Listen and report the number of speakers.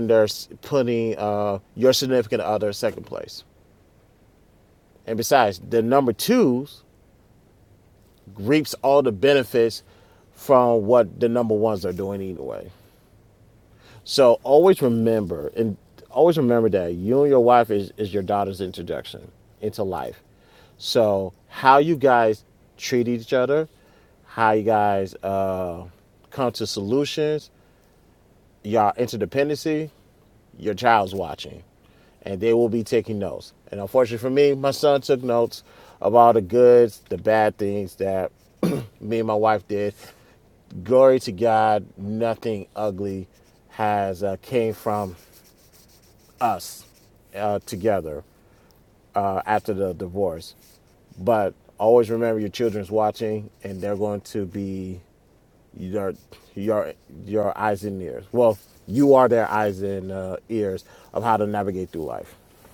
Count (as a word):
one